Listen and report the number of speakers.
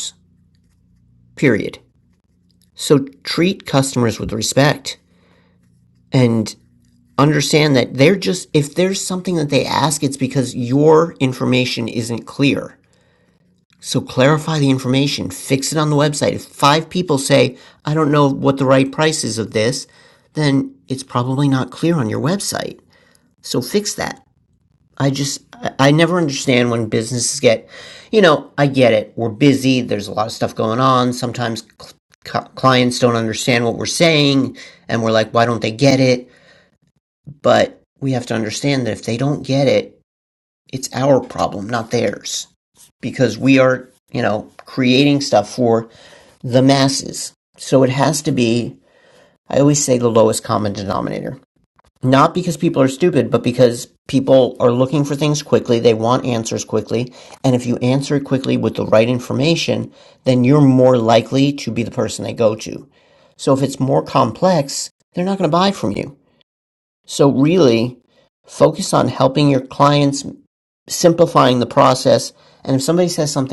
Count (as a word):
one